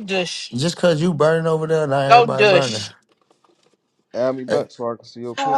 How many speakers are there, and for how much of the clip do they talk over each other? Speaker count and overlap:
3, about 21%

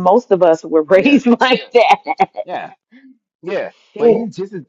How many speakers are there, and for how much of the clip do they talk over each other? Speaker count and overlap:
2, about 12%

